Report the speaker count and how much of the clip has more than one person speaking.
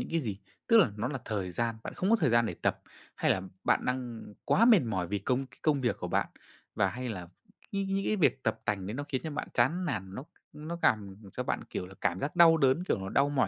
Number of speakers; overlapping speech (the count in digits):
1, no overlap